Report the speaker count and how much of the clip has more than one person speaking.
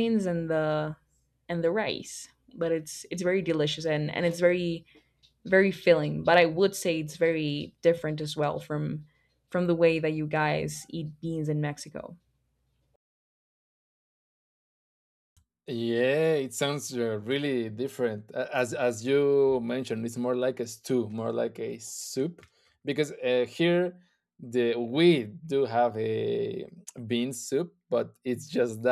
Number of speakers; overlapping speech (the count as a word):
two, no overlap